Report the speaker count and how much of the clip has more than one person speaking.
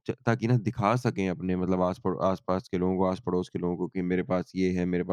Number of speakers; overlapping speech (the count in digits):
1, no overlap